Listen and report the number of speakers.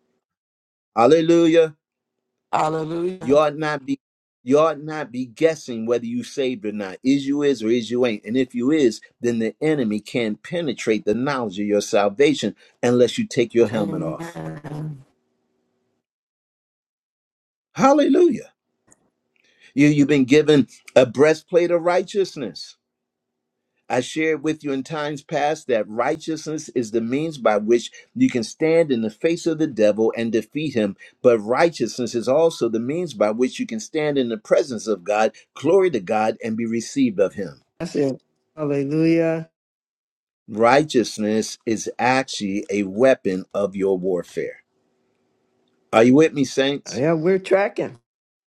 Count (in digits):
3